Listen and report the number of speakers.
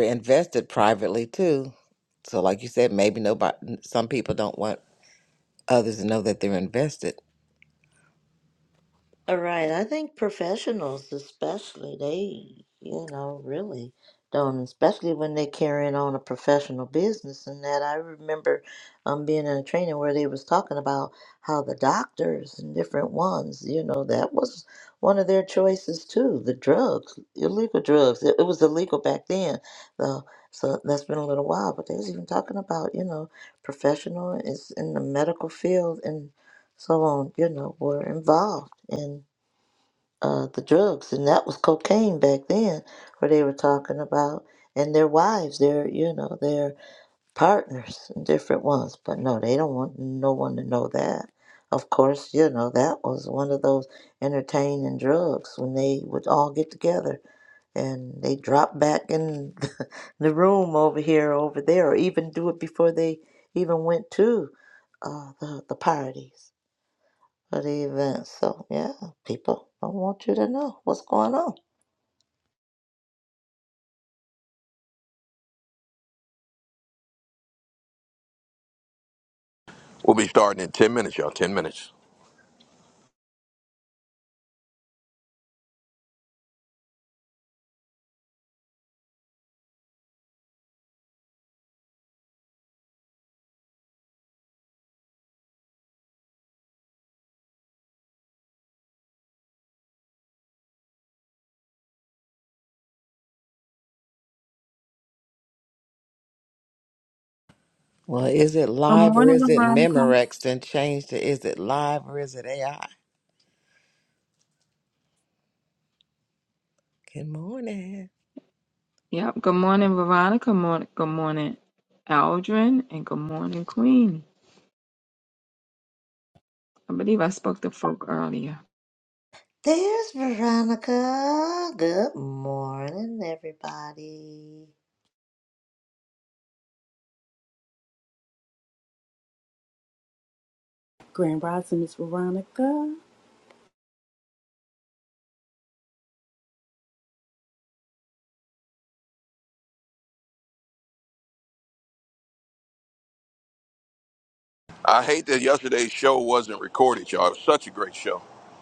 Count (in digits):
5